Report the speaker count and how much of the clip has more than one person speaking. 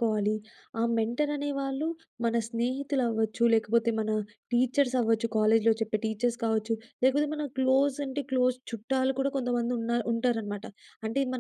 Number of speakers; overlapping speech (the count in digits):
1, no overlap